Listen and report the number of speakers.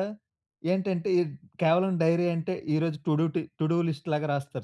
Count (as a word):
one